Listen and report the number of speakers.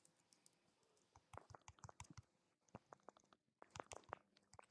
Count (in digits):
0